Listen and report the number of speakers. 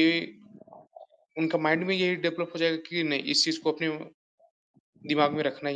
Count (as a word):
one